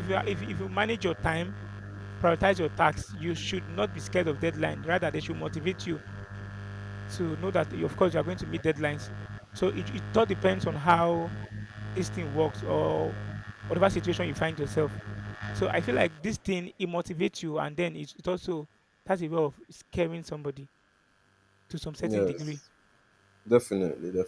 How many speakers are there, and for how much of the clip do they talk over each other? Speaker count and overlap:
2, about 2%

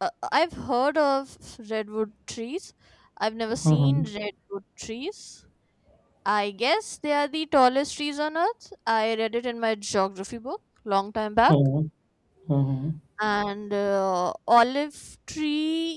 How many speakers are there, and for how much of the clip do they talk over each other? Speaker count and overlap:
2, about 3%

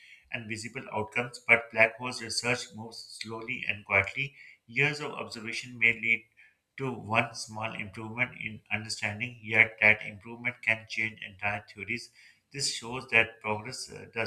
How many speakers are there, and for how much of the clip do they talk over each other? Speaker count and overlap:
1, no overlap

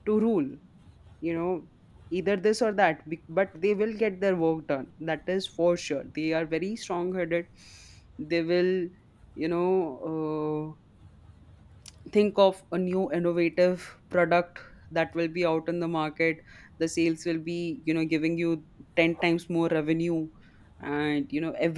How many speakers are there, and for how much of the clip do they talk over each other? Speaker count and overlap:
1, no overlap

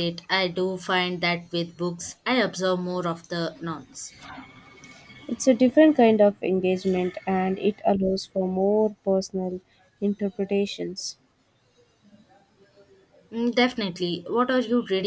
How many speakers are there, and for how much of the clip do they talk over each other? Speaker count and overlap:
2, no overlap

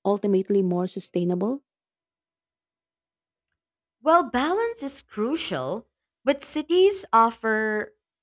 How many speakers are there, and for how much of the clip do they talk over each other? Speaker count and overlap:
2, no overlap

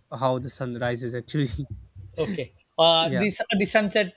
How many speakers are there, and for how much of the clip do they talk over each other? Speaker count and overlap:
2, about 6%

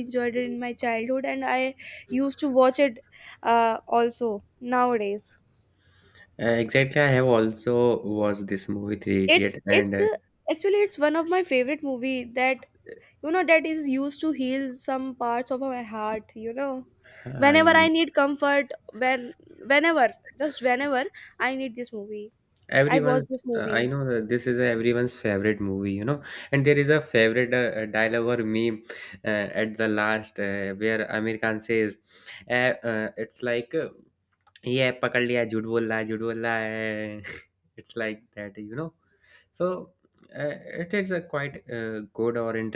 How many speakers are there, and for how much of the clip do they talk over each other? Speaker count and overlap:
2, about 5%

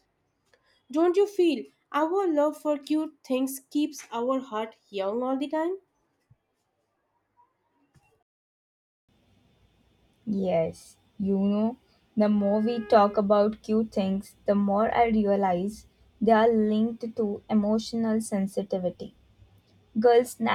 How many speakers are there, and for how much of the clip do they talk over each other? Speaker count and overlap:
2, no overlap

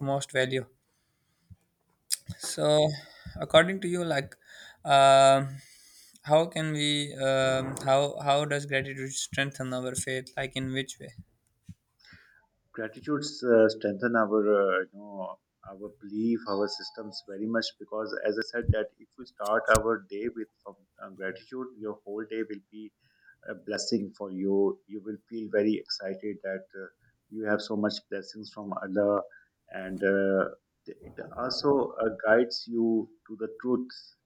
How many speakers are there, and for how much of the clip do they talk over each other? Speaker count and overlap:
2, no overlap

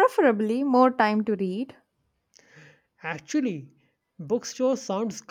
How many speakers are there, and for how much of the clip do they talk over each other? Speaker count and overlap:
2, no overlap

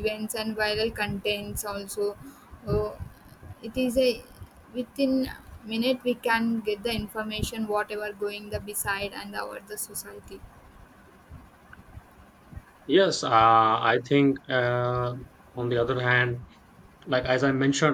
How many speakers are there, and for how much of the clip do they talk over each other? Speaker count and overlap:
2, no overlap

